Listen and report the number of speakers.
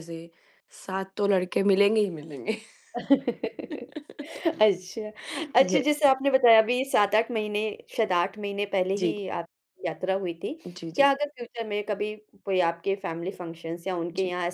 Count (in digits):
2